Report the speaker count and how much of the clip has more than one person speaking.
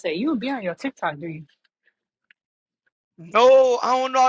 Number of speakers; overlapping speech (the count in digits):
2, no overlap